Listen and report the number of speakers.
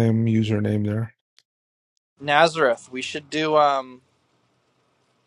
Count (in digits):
2